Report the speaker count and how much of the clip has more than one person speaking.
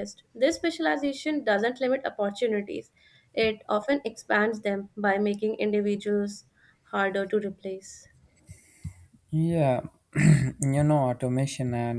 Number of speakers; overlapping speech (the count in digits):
2, no overlap